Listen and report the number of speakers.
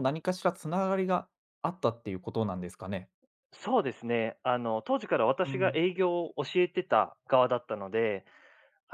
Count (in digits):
2